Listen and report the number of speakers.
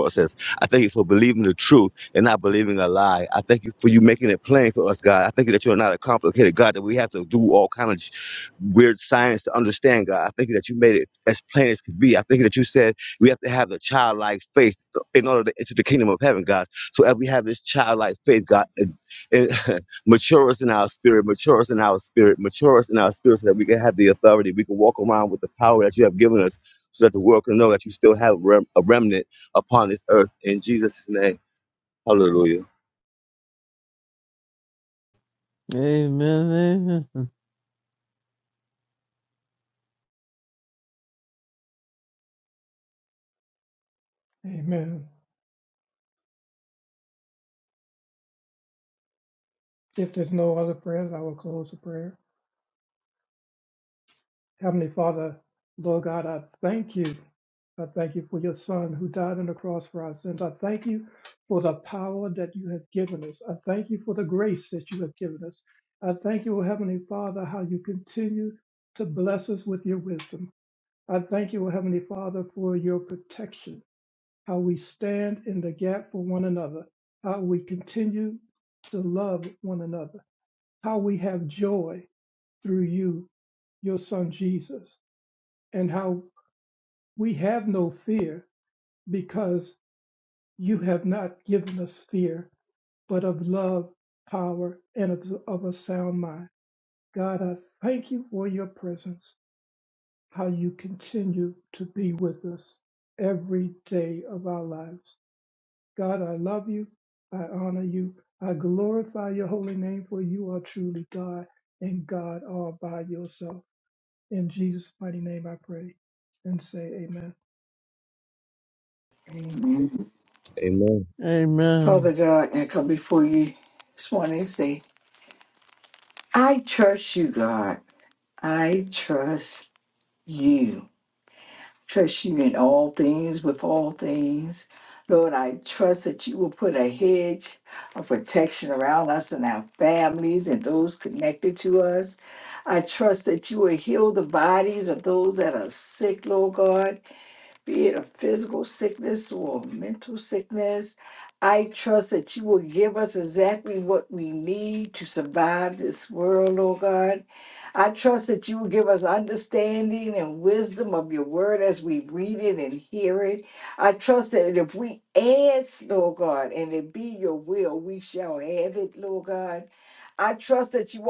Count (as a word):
four